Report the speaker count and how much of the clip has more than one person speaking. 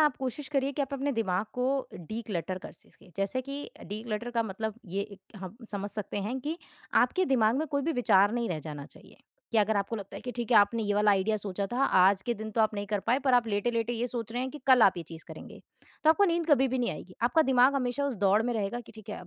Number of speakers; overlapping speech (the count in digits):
1, no overlap